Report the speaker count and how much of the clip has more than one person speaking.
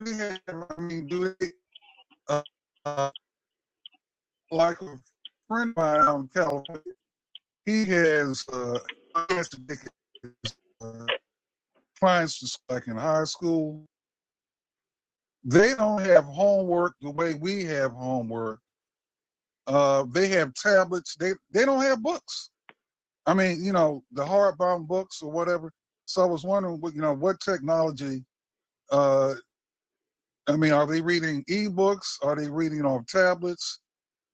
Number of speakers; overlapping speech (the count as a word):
one, no overlap